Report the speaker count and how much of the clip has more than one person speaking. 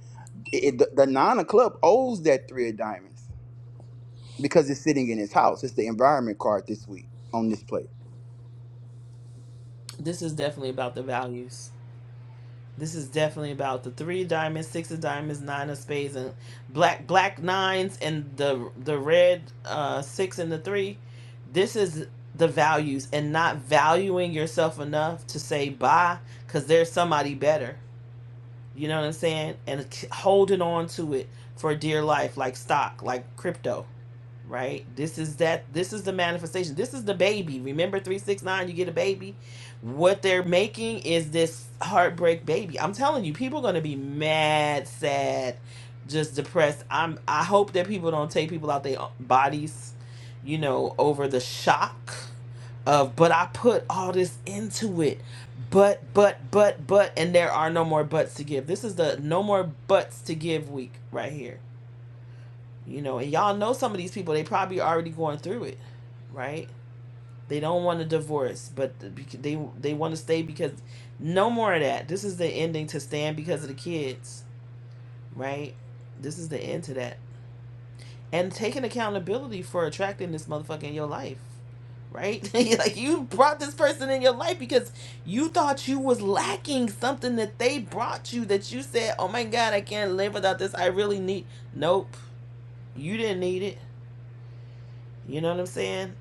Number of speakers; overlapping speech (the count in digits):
2, no overlap